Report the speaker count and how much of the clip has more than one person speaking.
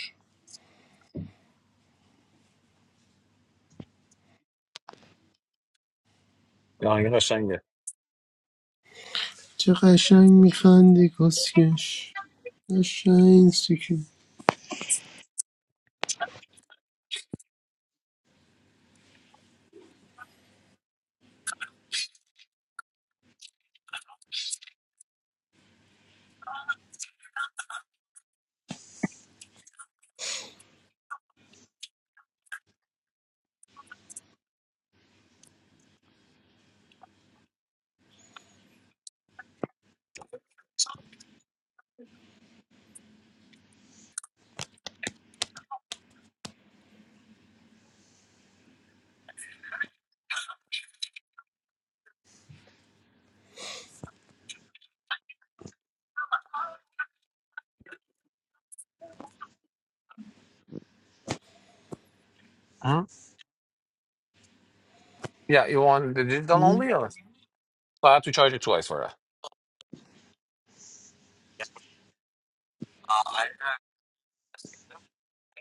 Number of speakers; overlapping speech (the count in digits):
2, under 1%